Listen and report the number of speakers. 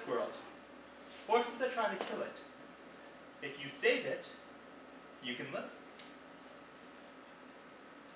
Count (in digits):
1